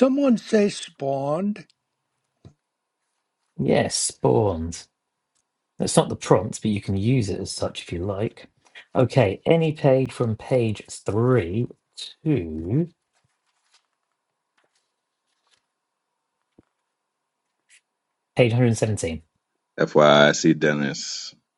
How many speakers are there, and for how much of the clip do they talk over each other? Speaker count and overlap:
three, no overlap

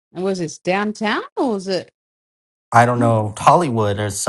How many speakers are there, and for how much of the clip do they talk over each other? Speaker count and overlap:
two, about 5%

